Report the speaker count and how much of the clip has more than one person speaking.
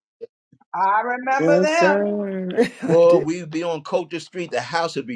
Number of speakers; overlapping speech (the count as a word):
three, about 20%